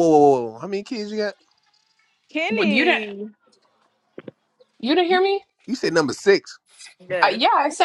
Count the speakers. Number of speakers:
three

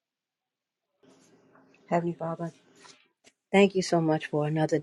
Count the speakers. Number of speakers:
one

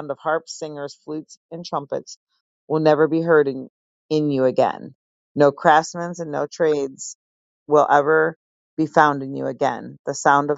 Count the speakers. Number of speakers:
one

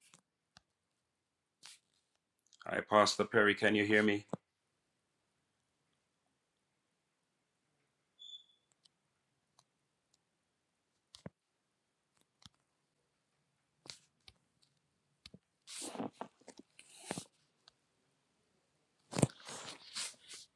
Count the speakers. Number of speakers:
one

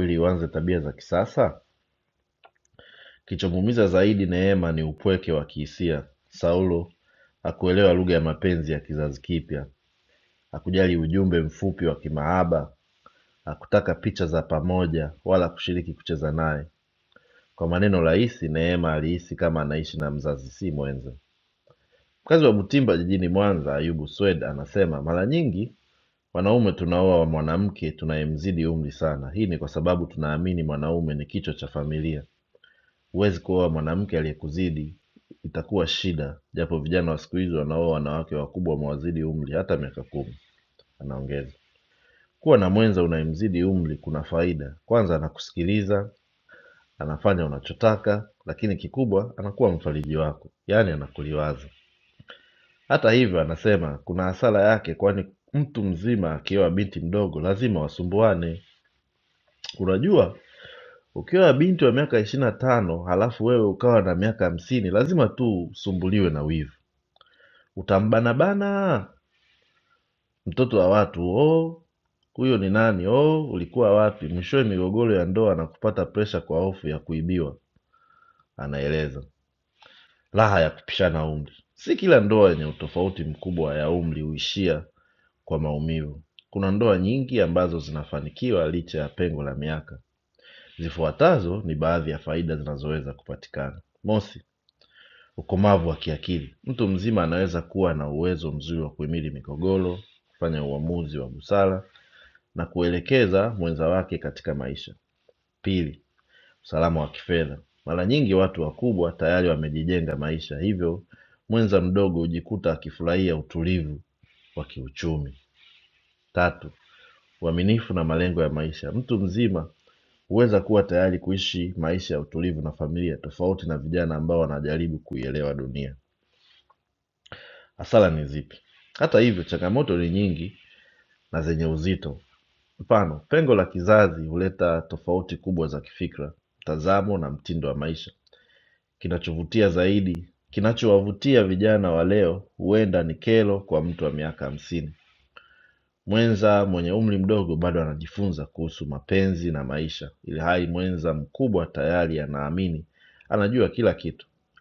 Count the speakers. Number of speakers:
one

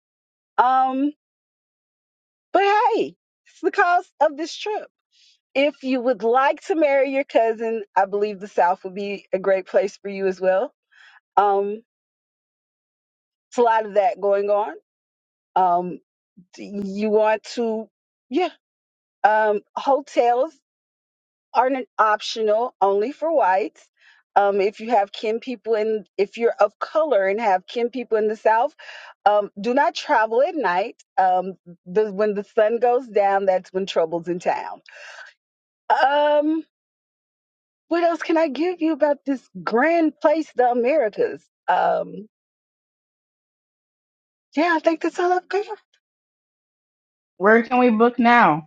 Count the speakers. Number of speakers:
two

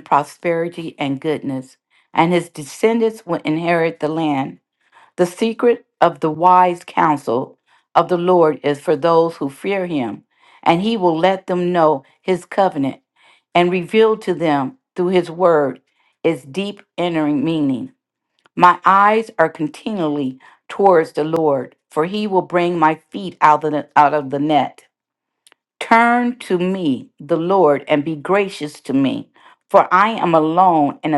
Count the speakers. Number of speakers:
one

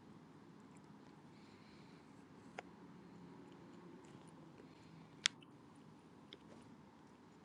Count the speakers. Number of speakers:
zero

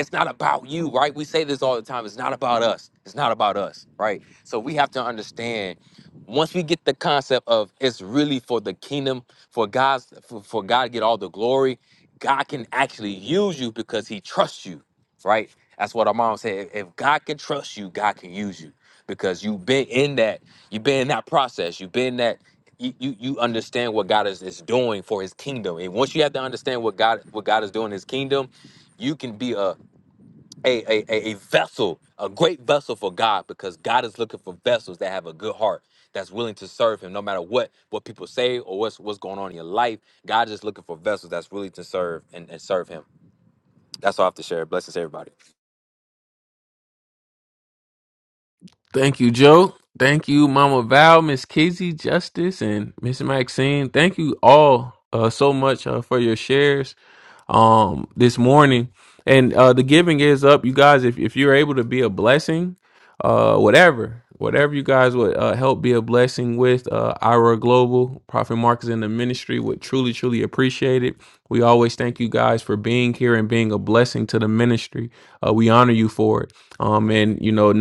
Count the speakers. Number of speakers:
two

